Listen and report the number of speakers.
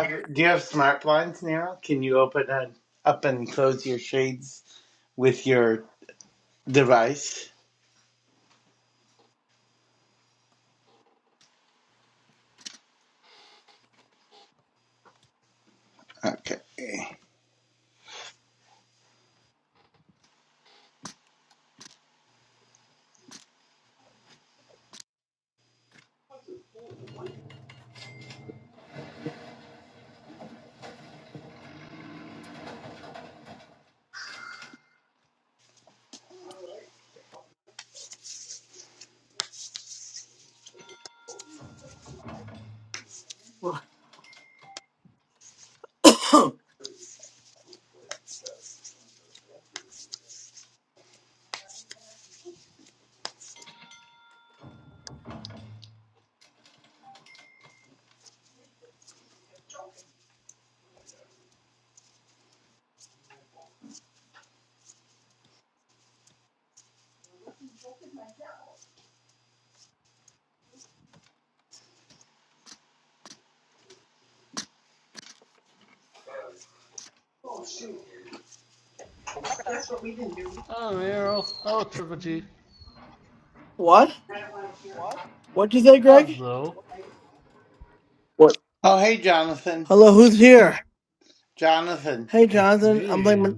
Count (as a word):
three